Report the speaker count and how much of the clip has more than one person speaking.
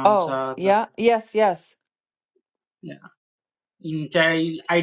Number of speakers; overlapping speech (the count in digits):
2, about 14%